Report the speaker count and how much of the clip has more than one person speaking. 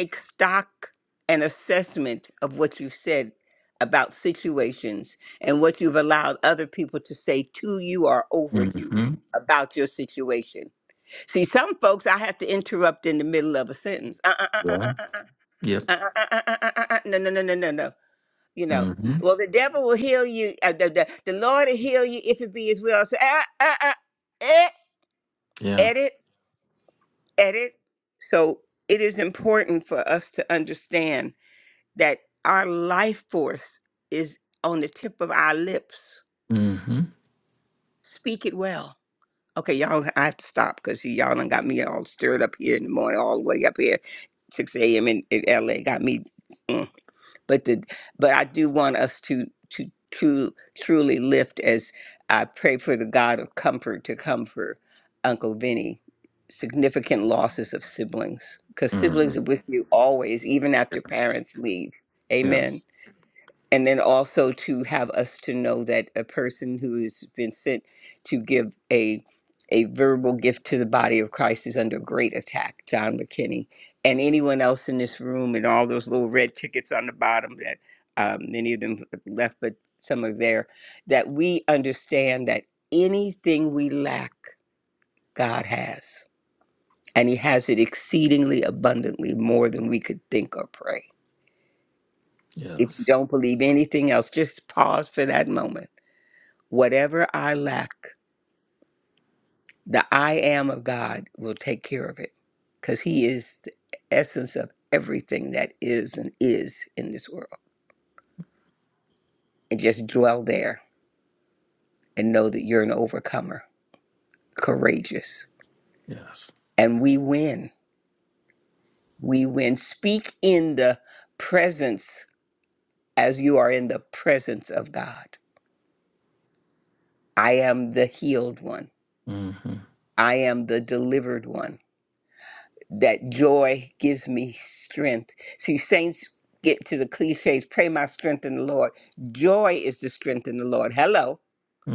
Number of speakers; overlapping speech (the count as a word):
two, about 2%